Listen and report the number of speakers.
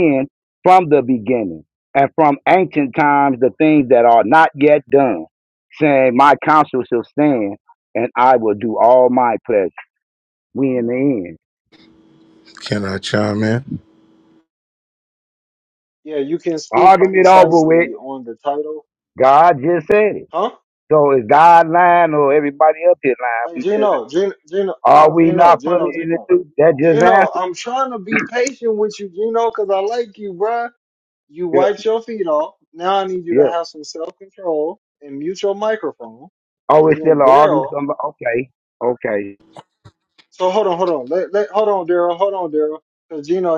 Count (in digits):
3